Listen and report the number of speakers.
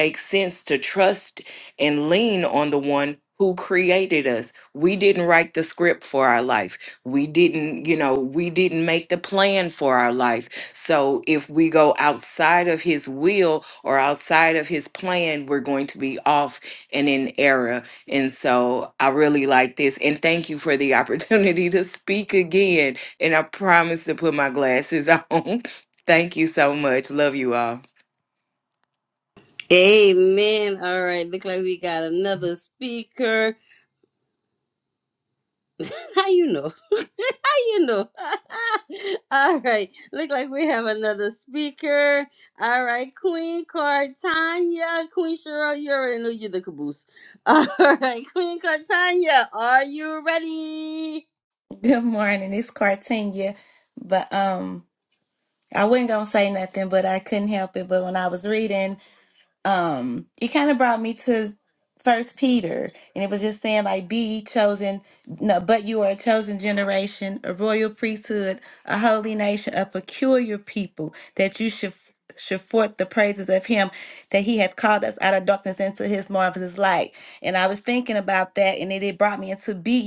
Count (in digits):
3